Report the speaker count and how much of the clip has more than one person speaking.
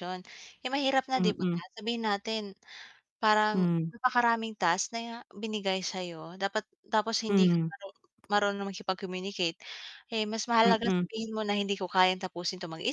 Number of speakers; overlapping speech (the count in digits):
2, about 12%